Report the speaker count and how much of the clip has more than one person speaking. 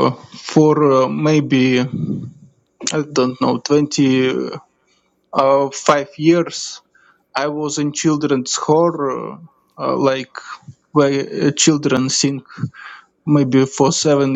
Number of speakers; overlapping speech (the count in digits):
1, no overlap